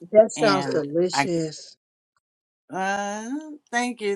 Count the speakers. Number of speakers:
2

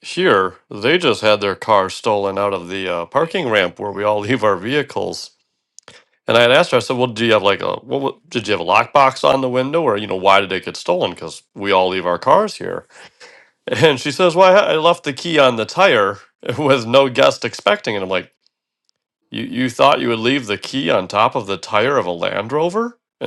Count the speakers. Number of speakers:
1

